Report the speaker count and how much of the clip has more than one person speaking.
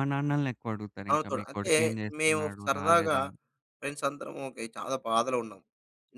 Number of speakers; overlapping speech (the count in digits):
2, about 28%